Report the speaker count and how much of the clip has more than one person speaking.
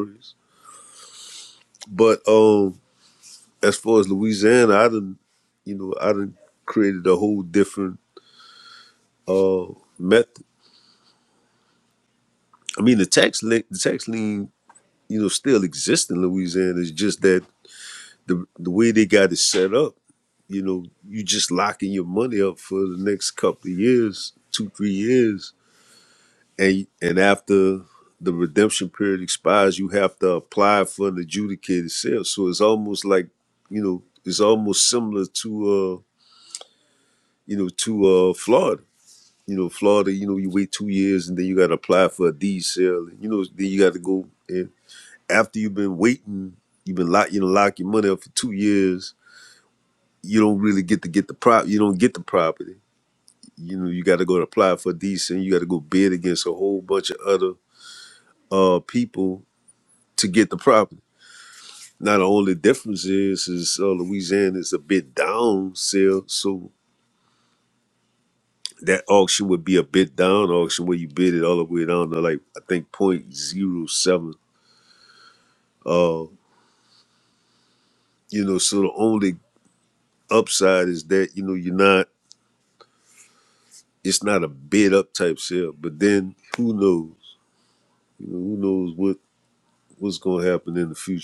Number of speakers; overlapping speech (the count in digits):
1, no overlap